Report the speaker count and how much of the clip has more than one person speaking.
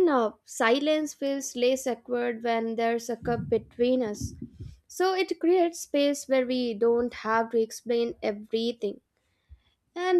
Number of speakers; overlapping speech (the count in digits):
1, no overlap